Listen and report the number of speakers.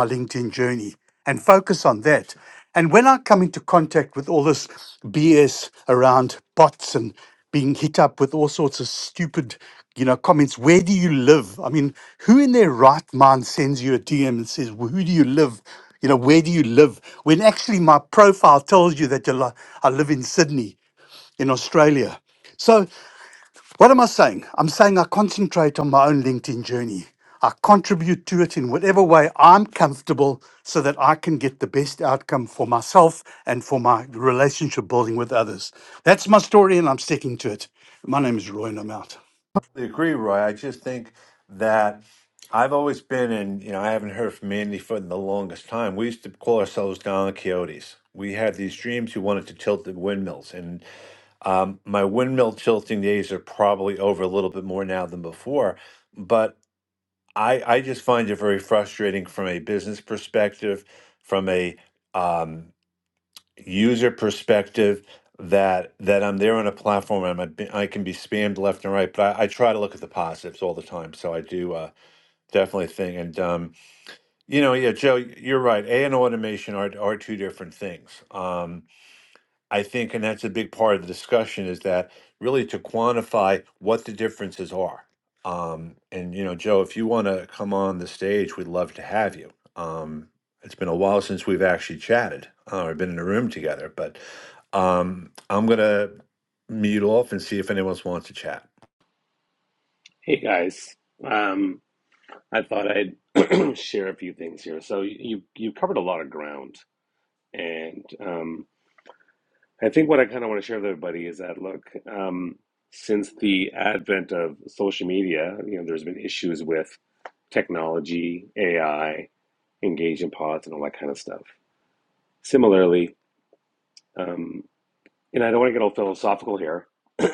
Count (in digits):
3